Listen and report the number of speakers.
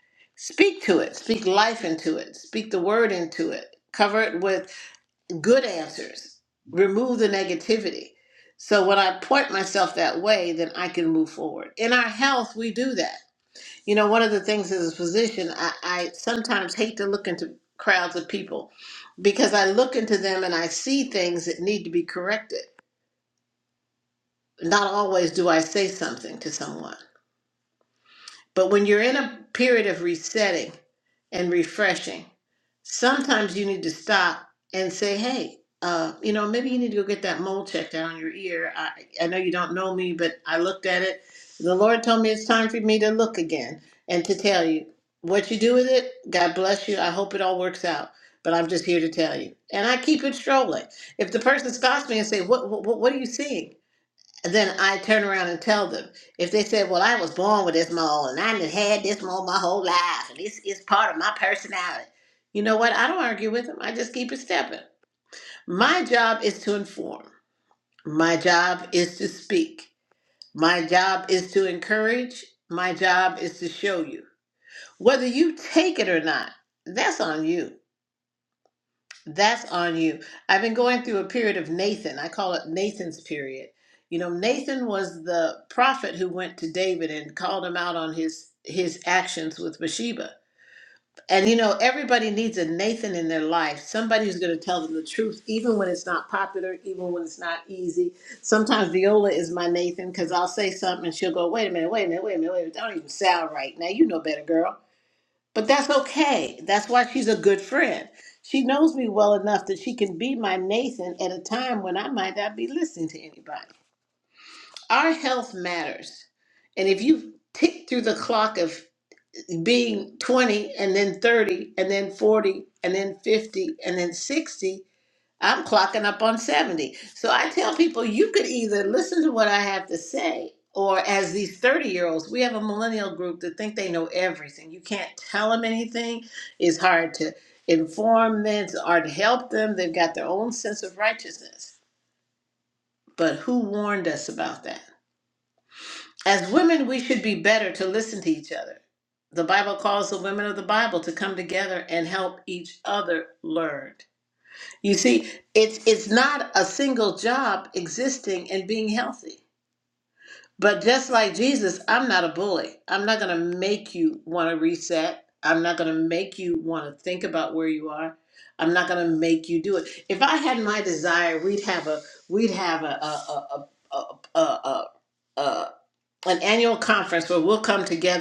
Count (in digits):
1